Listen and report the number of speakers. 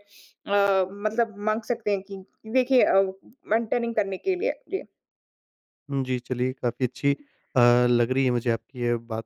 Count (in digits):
2